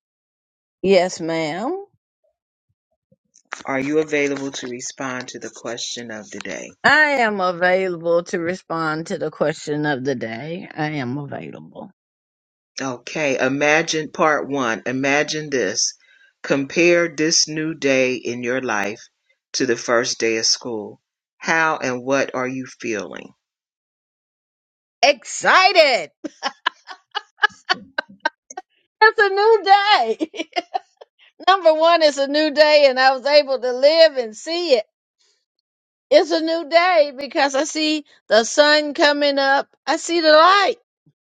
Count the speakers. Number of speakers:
2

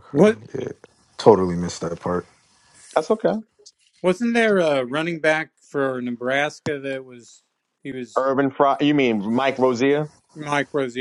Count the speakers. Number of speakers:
3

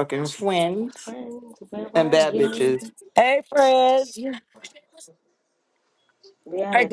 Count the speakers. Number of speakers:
3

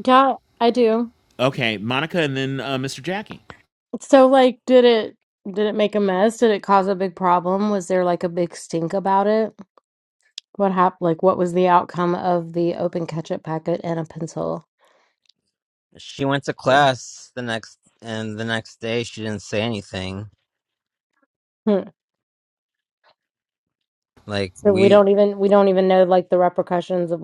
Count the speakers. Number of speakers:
3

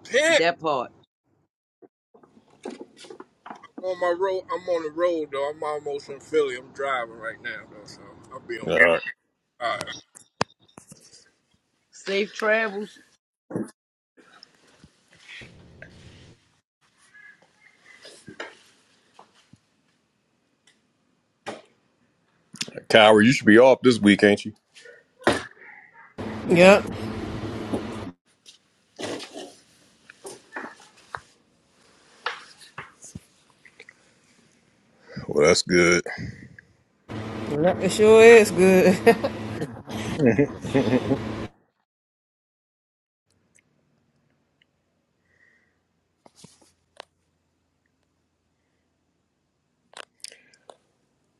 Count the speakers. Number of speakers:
4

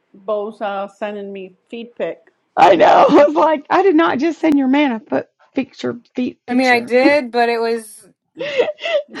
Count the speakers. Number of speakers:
3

